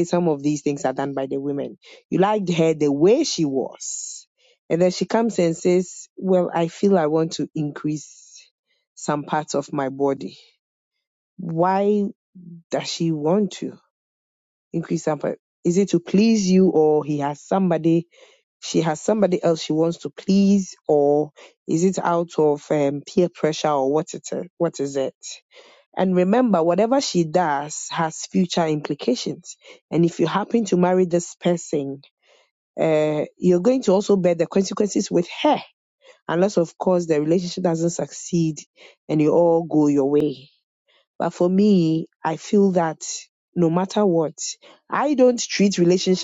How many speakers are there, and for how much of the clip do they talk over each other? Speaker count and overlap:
one, no overlap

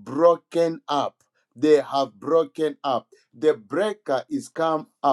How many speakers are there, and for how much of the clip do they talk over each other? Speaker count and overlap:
one, no overlap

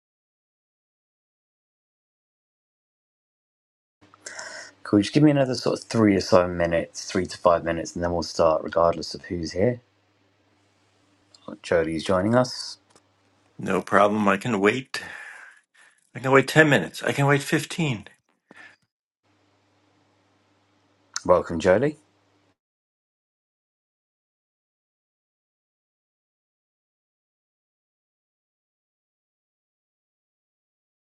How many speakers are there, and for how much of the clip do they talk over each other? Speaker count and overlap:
two, no overlap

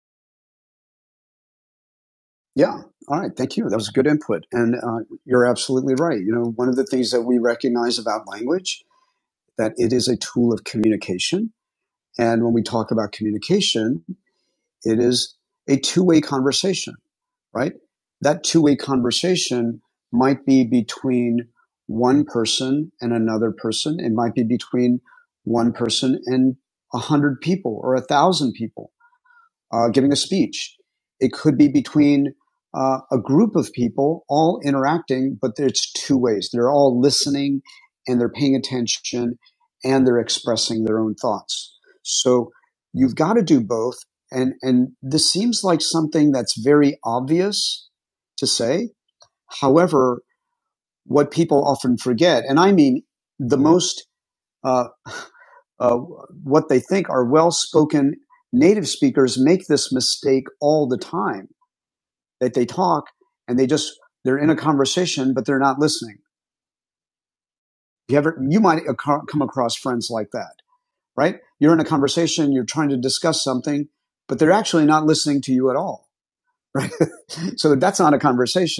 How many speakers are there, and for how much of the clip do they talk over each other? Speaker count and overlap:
one, no overlap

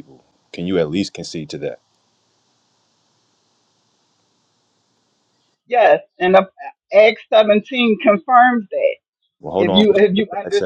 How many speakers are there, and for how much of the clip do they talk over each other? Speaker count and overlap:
two, about 10%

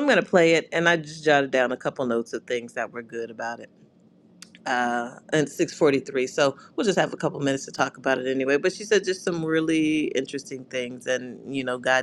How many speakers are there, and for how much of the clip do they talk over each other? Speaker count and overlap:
one, no overlap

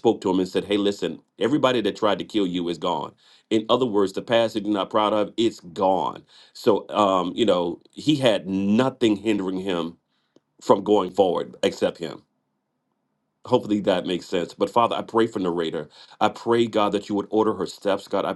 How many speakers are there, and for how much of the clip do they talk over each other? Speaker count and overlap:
one, no overlap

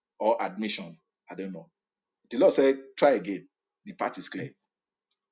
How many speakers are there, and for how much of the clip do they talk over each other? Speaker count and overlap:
one, no overlap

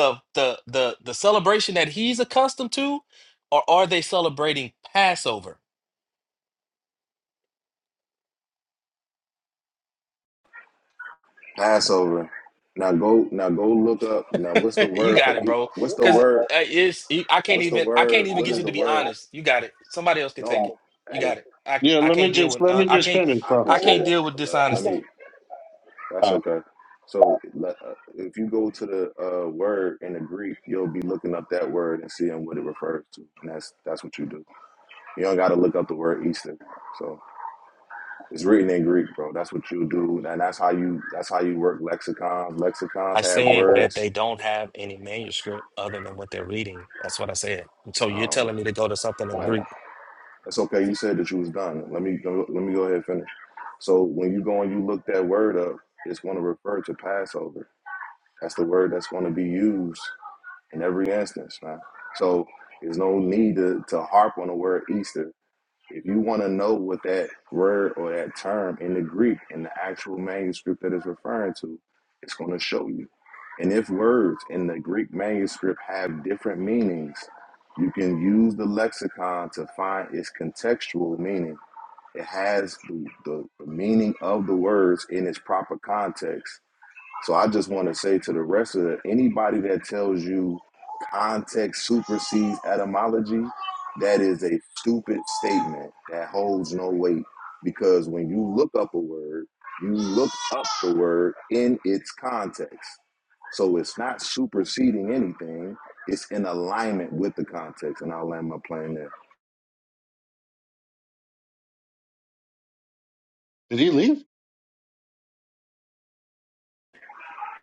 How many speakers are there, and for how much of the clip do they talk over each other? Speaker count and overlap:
three, about 7%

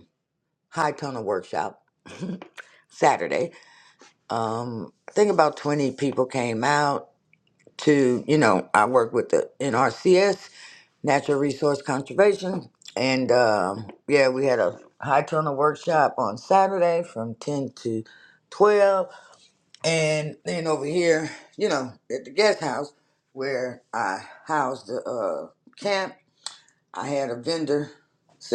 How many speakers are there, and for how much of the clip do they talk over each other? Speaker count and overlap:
one, no overlap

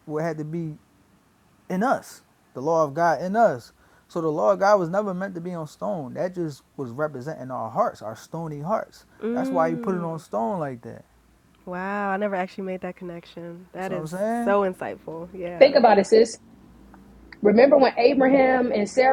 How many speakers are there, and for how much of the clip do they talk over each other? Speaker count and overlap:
three, about 7%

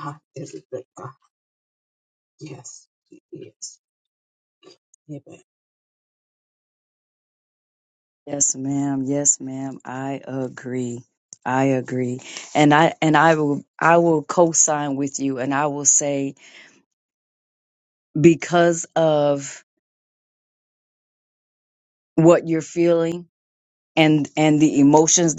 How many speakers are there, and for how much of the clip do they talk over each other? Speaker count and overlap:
two, no overlap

